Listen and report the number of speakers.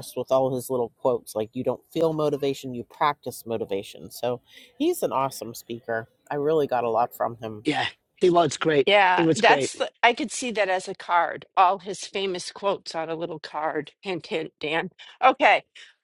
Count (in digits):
3